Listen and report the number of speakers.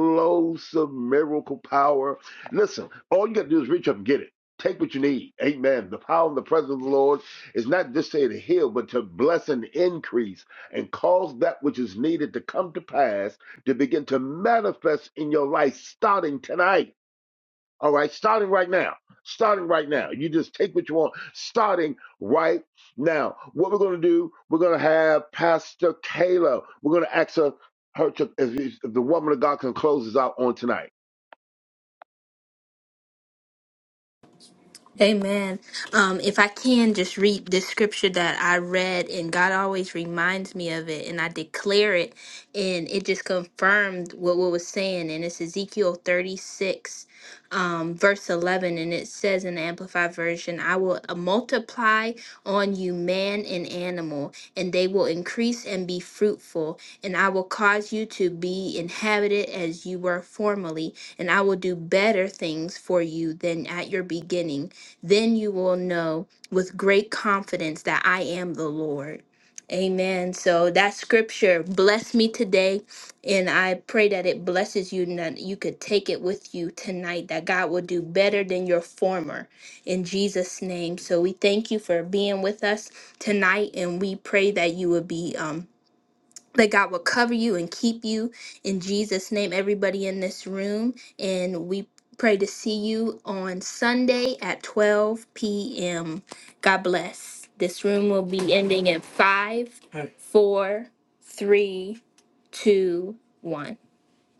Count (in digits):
2